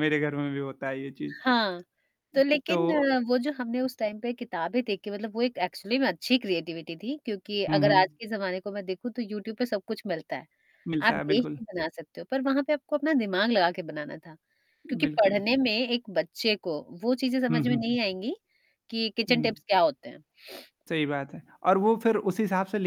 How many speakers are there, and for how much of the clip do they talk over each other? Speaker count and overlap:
2, about 10%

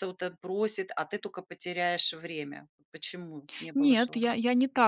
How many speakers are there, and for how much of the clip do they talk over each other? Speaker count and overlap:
2, about 9%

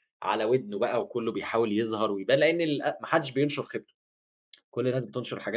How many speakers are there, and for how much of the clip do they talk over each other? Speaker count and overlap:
1, no overlap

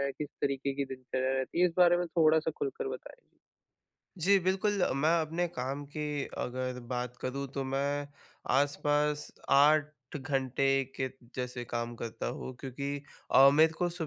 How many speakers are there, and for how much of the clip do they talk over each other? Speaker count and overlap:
2, no overlap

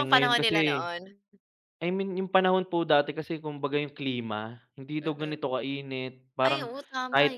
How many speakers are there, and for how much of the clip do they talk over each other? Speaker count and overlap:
2, about 24%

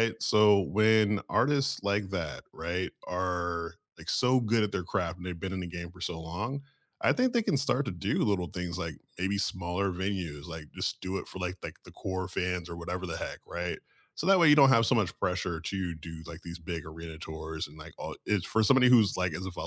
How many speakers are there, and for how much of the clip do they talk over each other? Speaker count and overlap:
1, no overlap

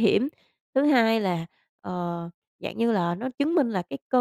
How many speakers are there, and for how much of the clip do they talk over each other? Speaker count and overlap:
1, no overlap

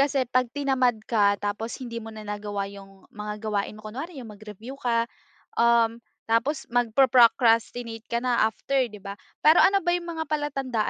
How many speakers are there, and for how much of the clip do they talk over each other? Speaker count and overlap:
1, no overlap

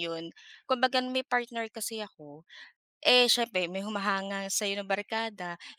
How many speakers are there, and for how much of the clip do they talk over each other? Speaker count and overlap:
1, no overlap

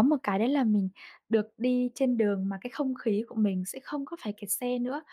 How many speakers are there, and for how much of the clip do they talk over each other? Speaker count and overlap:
1, no overlap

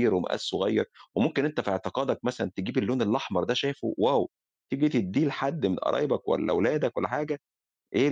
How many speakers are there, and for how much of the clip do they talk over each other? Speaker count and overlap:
1, no overlap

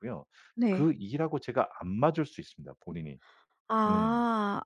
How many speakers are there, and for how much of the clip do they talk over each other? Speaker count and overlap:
2, about 8%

